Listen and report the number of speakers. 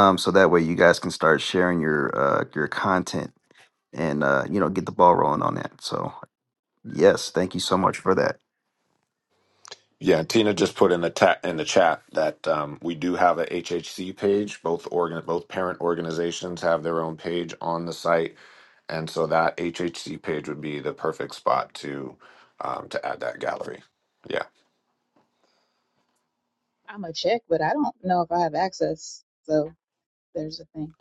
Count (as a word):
three